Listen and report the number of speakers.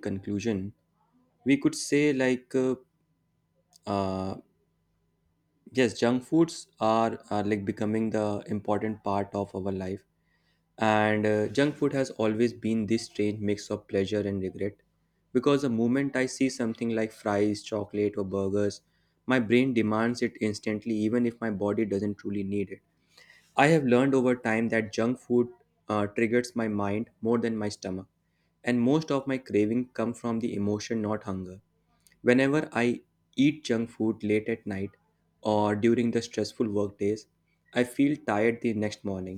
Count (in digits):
1